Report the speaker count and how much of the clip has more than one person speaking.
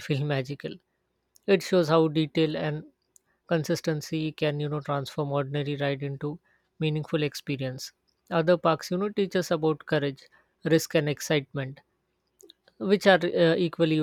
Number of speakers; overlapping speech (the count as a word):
one, no overlap